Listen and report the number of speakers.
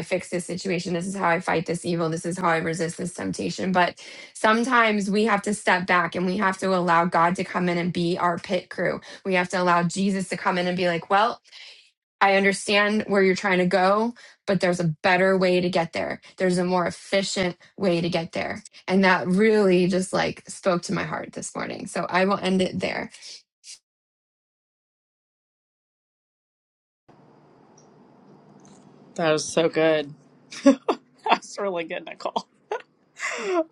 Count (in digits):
2